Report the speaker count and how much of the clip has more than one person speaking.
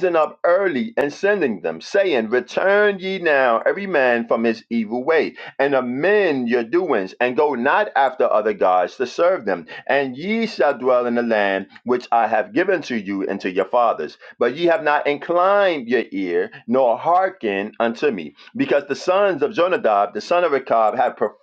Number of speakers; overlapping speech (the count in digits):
1, no overlap